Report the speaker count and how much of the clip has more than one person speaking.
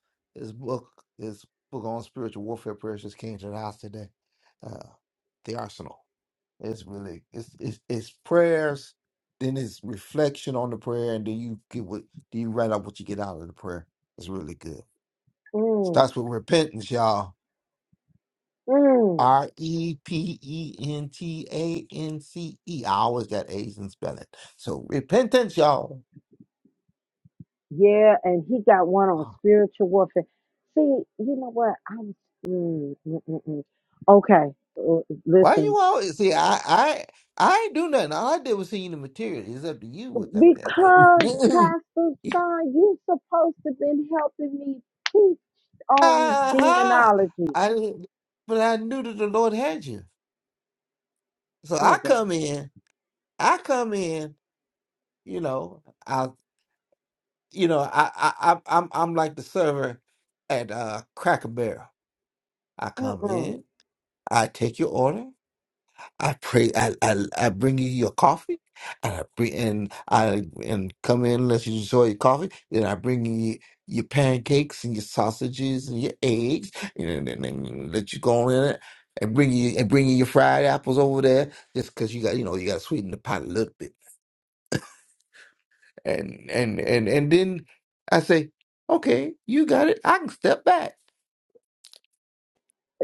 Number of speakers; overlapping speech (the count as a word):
two, about 4%